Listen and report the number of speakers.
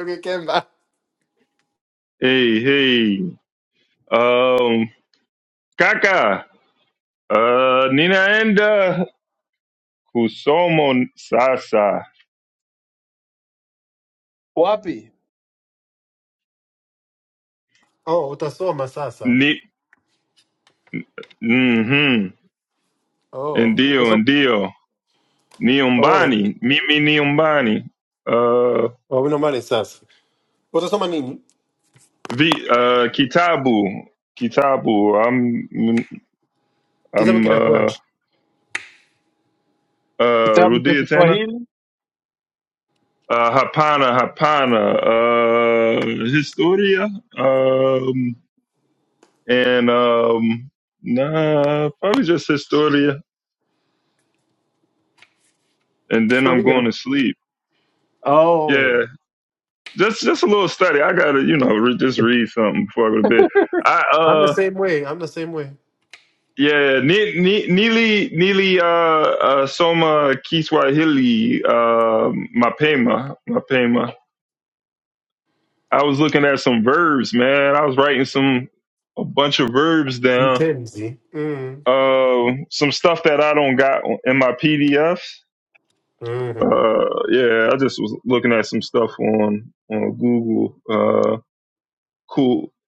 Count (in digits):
3